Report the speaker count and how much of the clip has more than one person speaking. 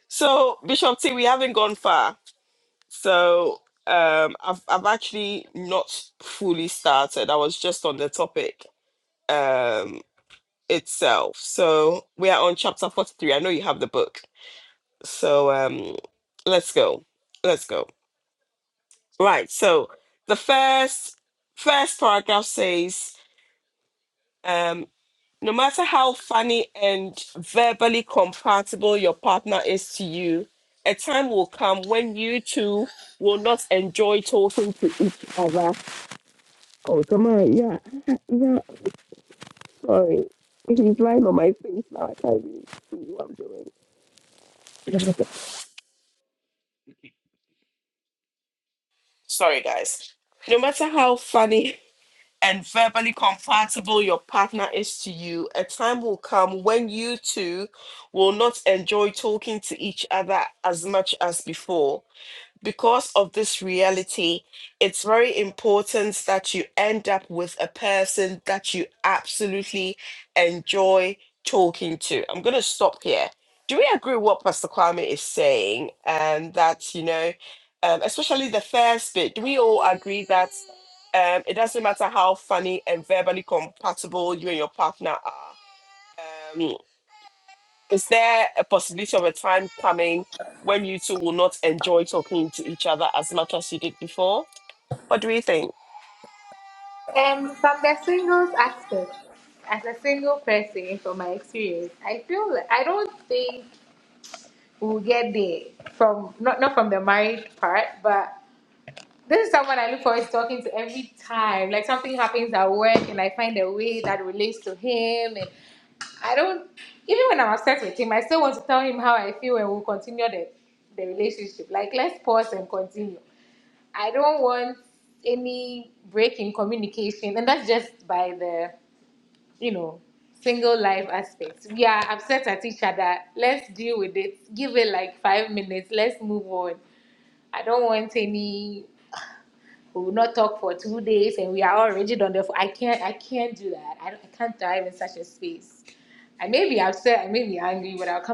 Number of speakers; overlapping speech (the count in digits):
2, no overlap